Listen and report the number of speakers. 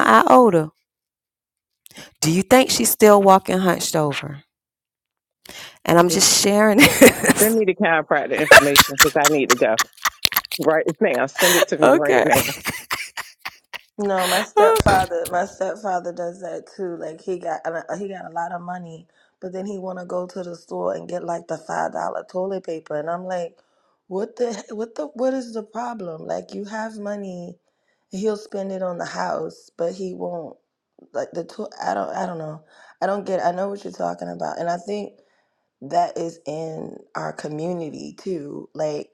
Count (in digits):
3